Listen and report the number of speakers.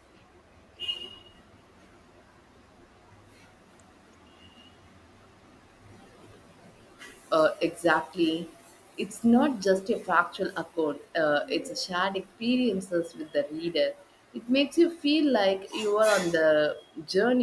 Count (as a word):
one